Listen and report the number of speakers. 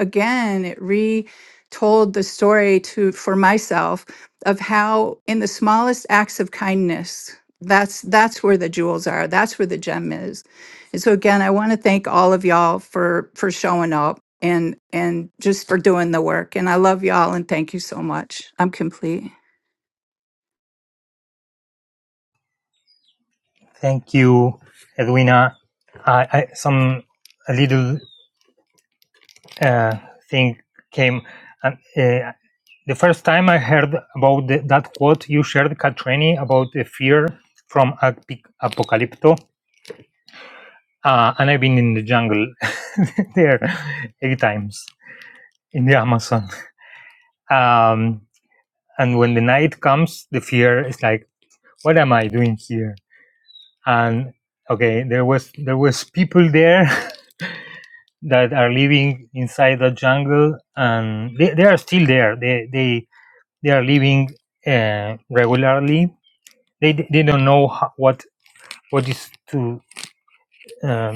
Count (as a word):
two